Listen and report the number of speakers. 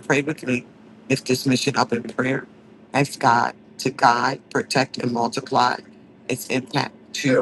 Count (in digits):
1